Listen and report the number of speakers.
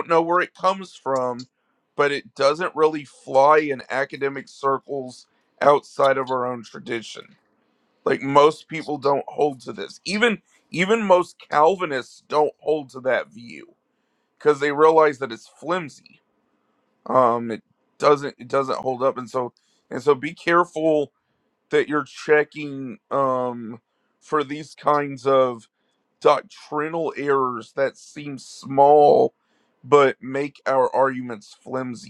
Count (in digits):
1